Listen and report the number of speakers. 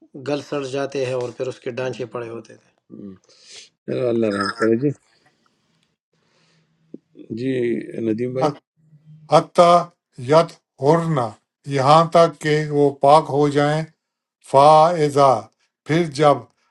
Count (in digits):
3